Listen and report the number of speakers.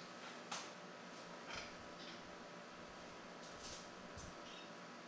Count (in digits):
0